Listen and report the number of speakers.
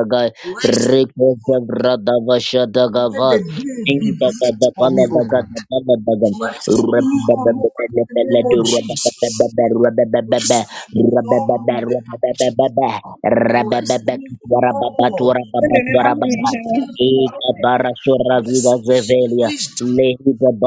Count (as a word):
three